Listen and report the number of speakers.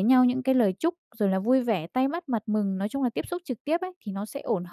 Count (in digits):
1